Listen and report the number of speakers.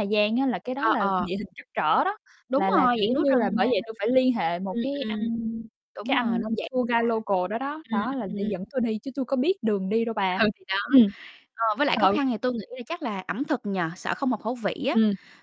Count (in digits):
2